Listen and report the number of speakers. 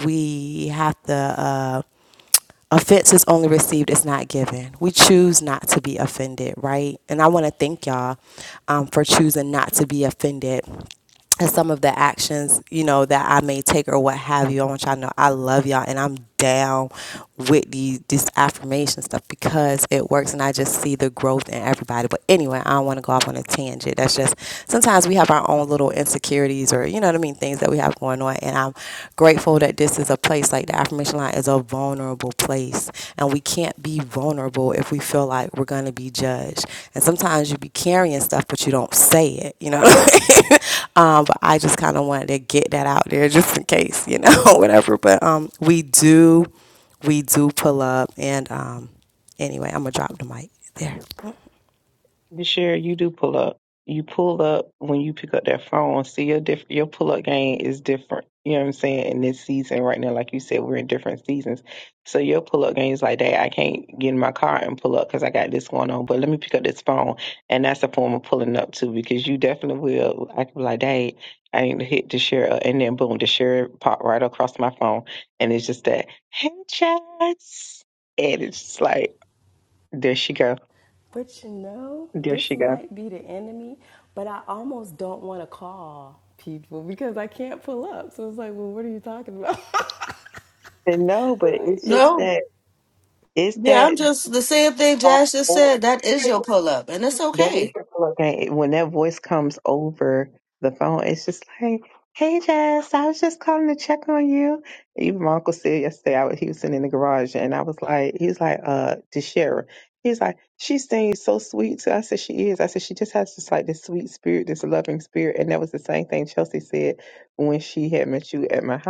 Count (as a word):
three